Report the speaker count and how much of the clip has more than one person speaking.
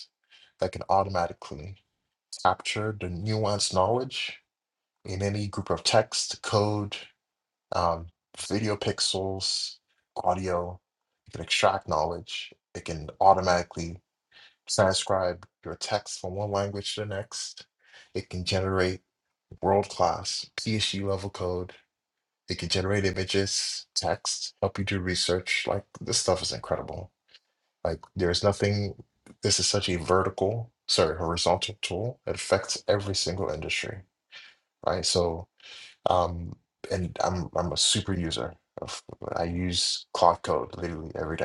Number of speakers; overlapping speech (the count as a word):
one, no overlap